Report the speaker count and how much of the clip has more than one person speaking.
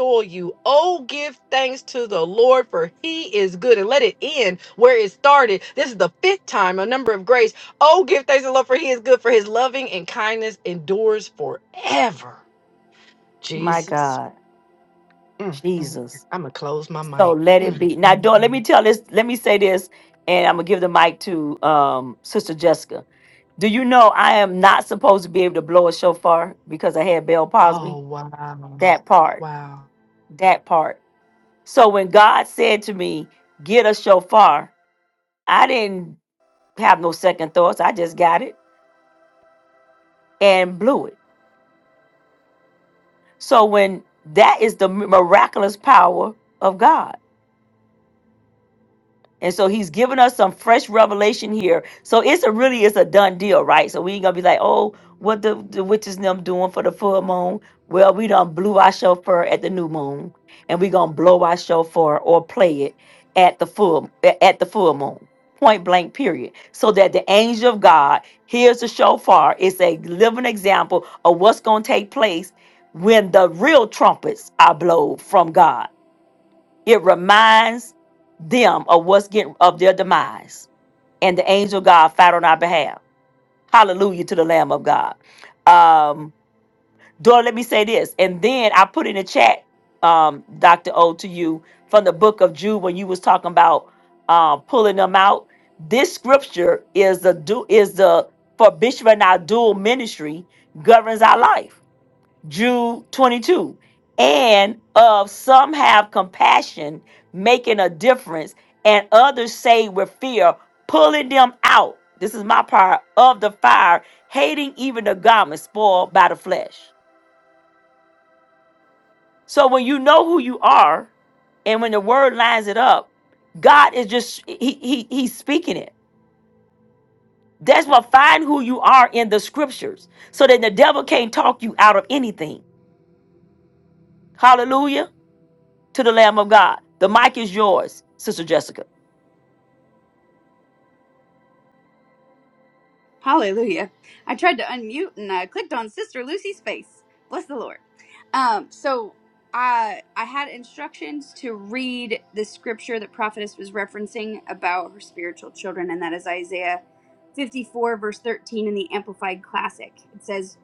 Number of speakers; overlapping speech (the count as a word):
three, about 1%